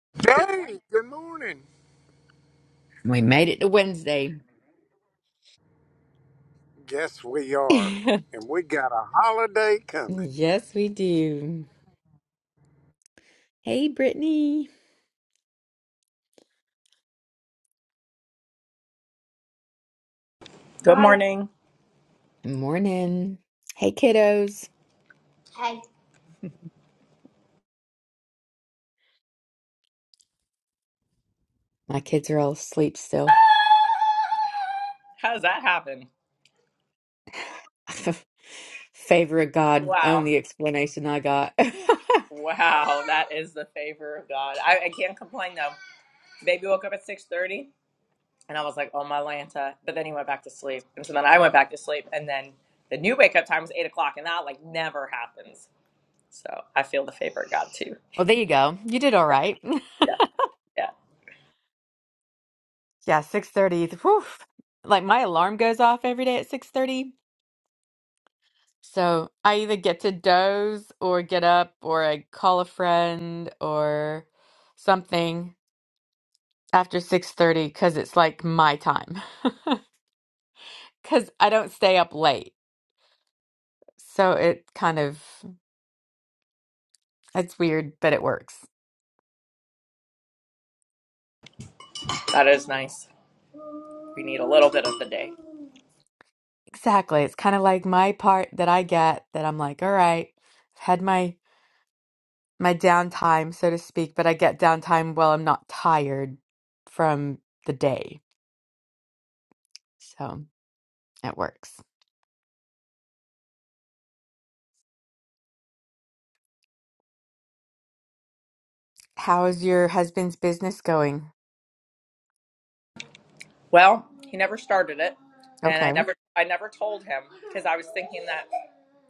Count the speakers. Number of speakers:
three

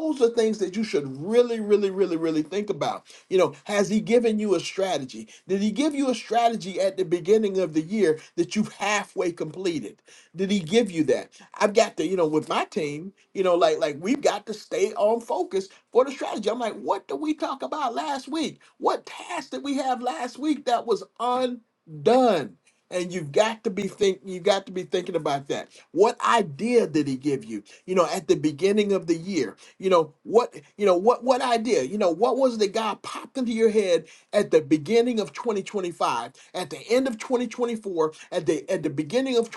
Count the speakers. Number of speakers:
one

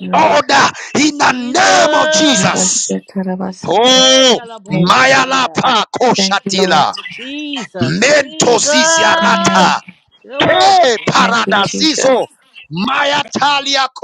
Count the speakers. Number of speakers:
three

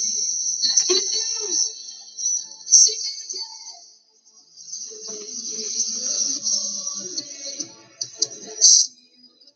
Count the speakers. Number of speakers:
zero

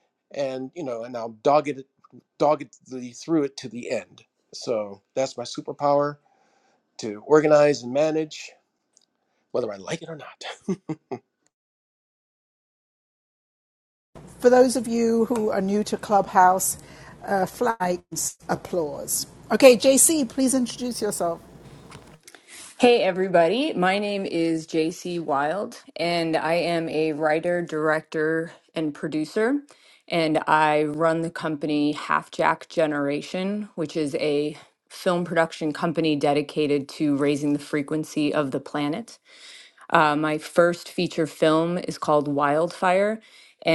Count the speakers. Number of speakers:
three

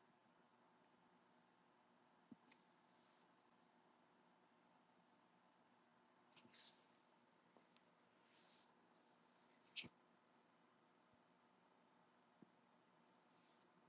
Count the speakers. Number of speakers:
zero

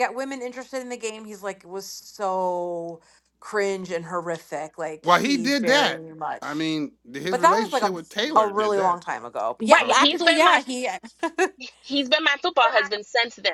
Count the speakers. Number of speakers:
three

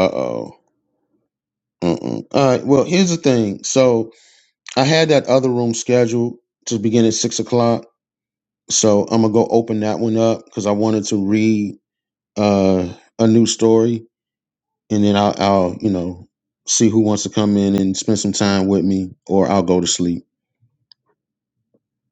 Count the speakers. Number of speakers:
one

